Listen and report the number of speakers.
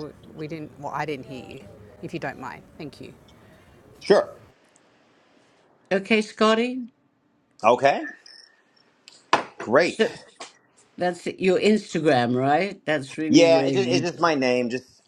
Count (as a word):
three